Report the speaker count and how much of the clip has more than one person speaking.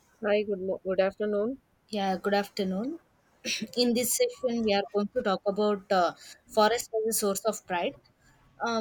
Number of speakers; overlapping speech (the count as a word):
two, no overlap